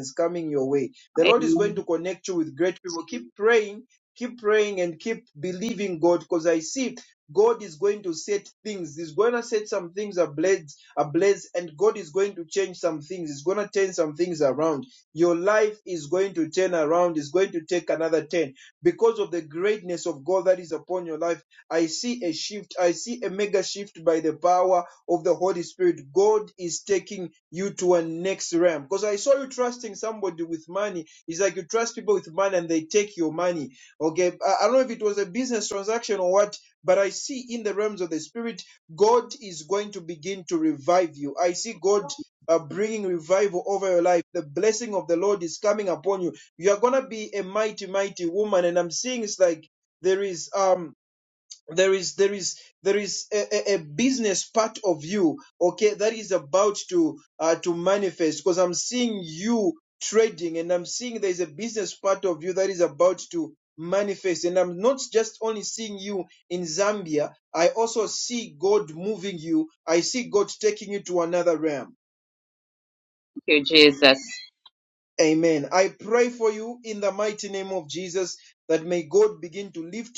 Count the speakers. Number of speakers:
2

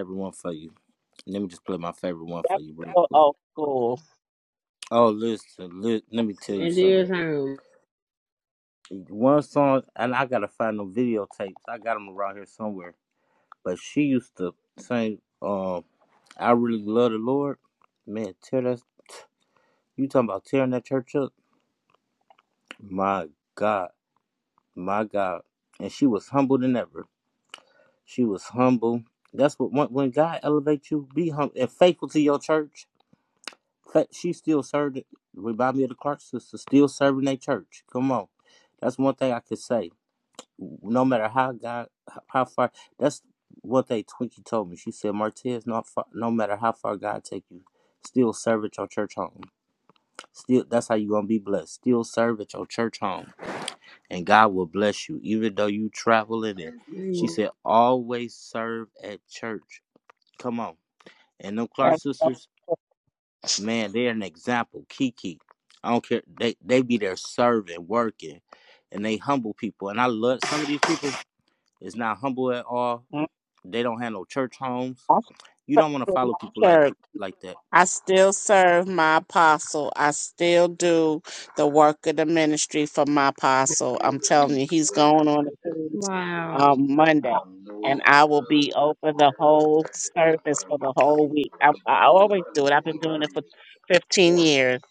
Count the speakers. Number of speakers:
3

